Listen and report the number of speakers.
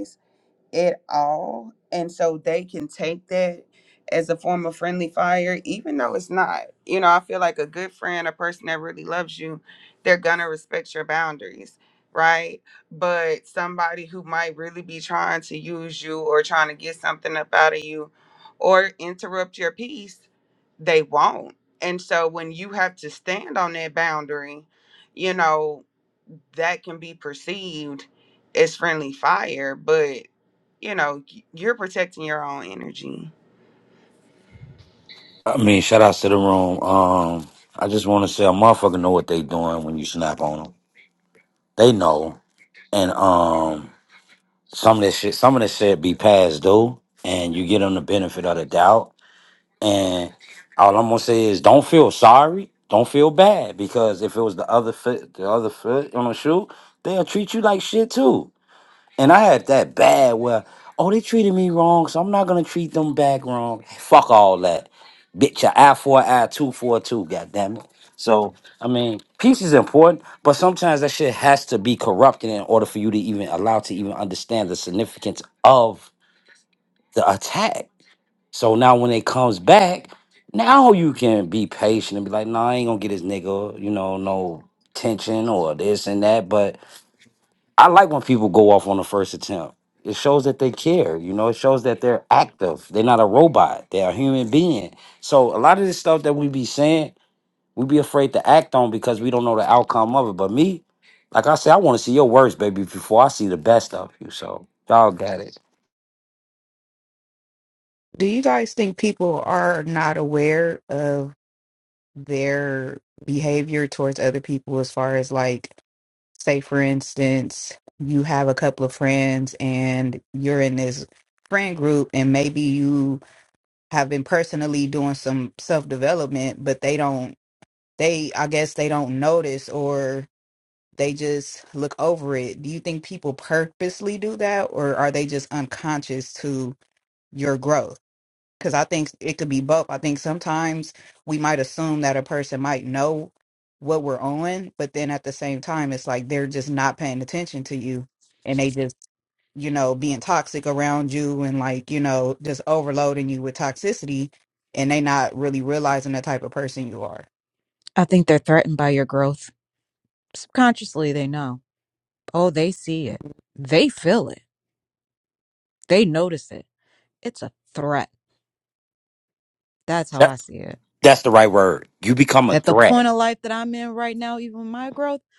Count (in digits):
4